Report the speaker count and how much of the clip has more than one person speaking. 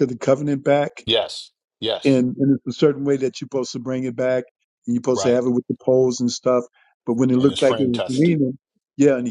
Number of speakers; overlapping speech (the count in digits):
2, about 14%